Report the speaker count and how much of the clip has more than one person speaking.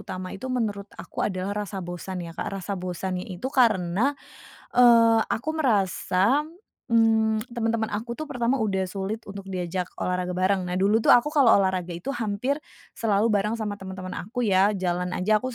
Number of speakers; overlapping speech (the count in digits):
1, no overlap